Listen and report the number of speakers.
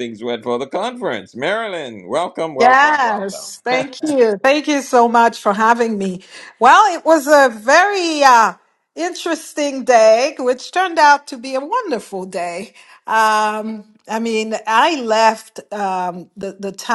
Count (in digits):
2